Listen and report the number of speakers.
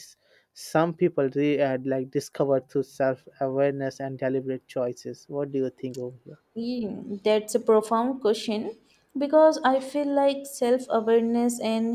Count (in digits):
2